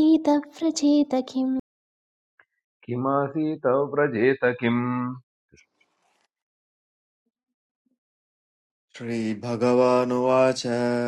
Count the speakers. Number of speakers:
3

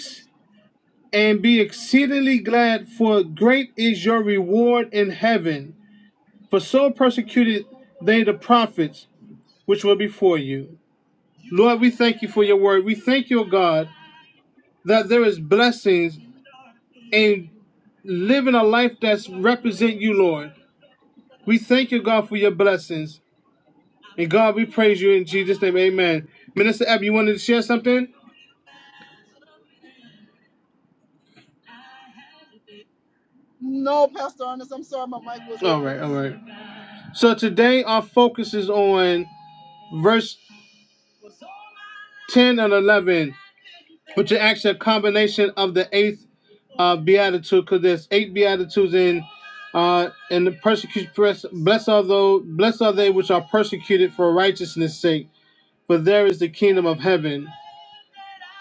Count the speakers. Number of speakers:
2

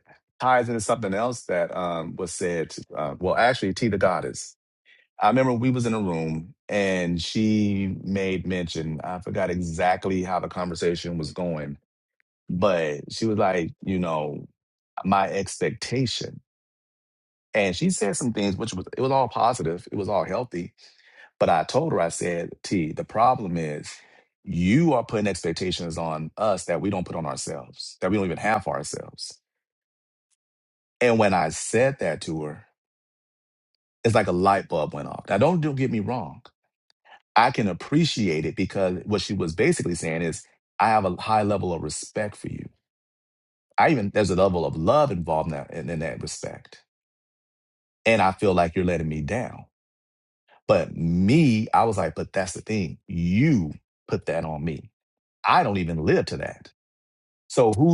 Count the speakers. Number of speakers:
1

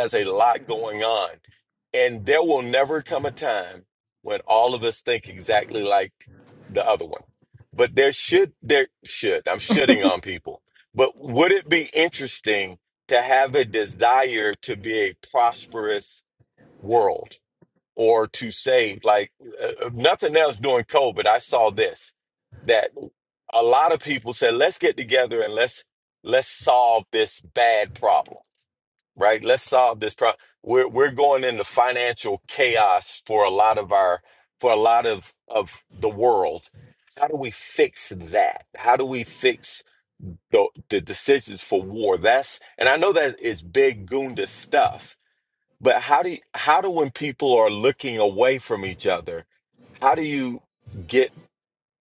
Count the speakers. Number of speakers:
1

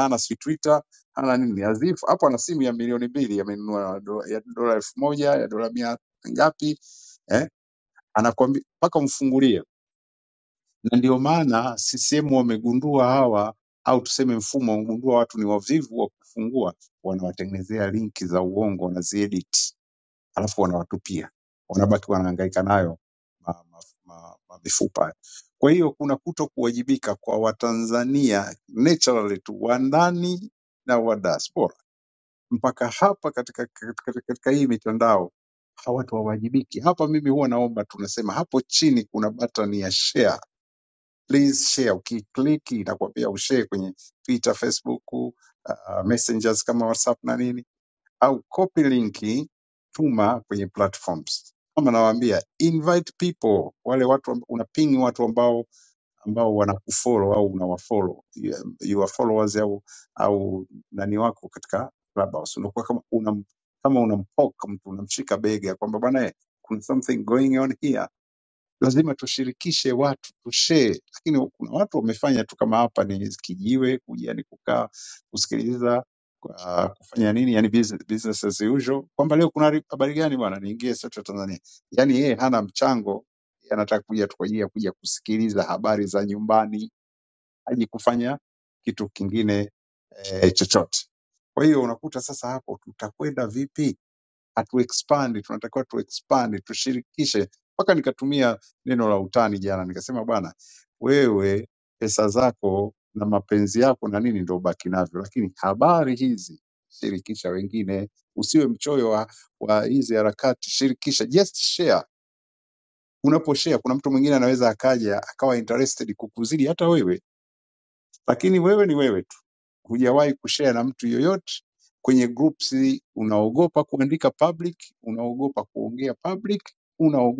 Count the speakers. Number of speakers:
1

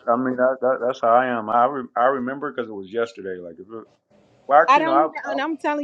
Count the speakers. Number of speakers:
2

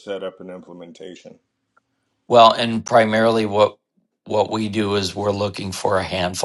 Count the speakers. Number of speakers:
2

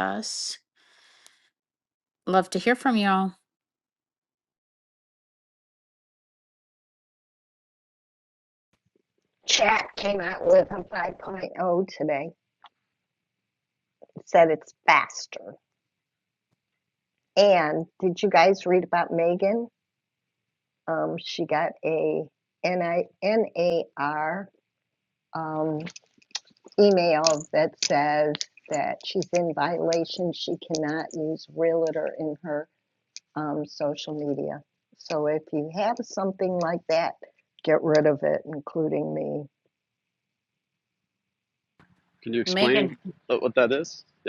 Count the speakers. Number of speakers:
3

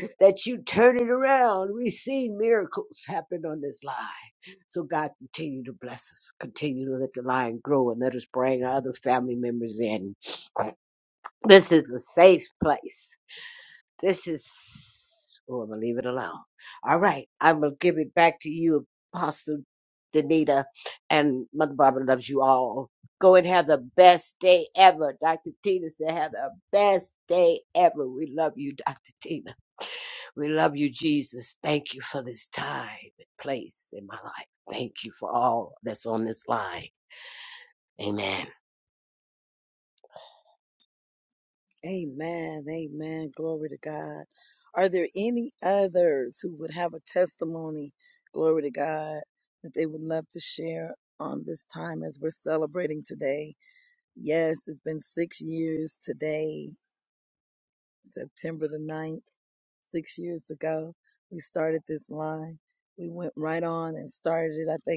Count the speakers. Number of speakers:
2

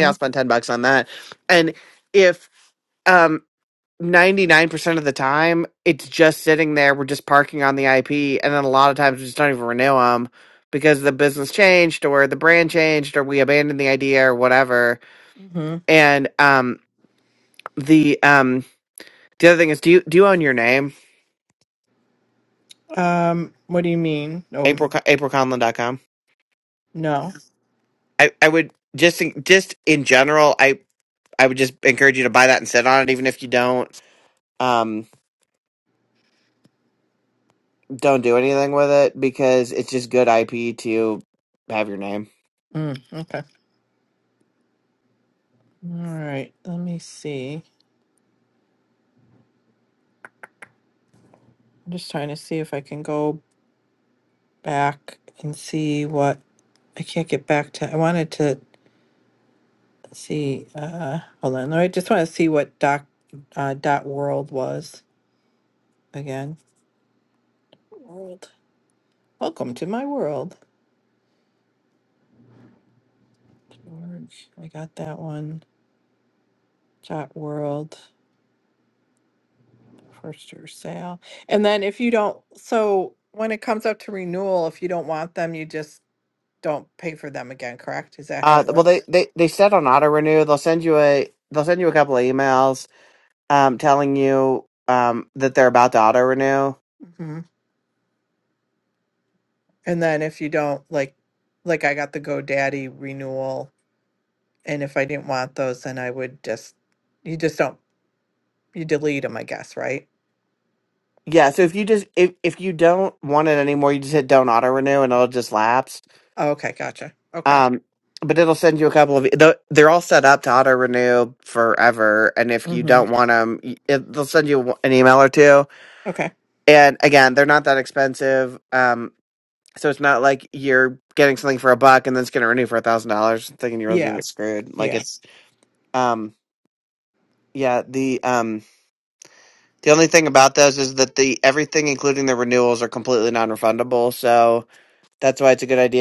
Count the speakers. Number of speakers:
2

